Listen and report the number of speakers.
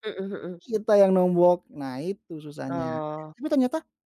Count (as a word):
two